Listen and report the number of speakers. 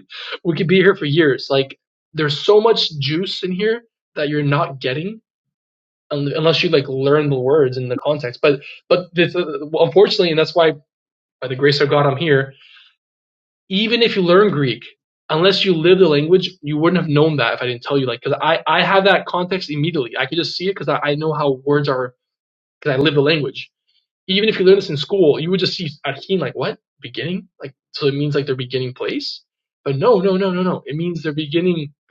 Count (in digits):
1